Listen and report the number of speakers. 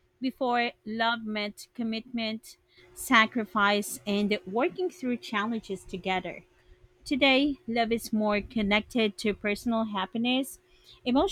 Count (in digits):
1